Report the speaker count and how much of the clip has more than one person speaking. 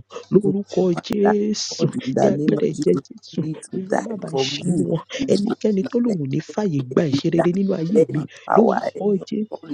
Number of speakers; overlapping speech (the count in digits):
2, about 73%